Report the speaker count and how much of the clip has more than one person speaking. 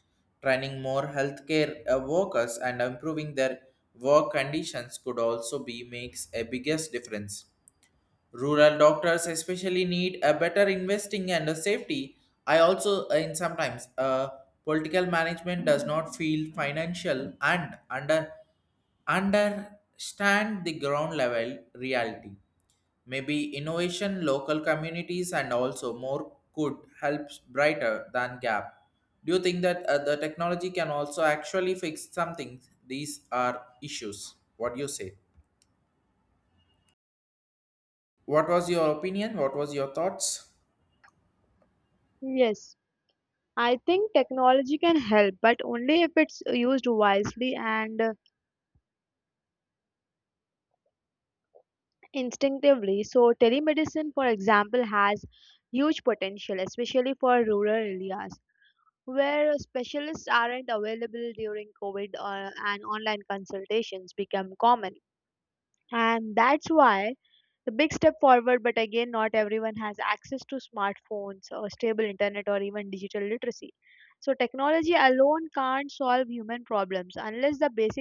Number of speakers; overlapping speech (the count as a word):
two, no overlap